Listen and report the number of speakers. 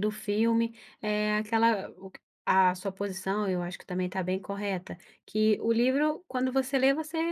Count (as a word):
one